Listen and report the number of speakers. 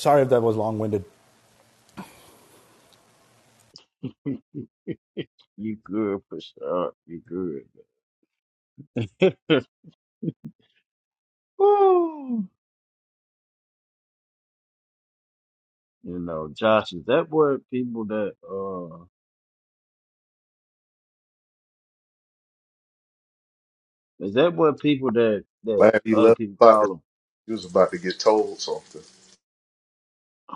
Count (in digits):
3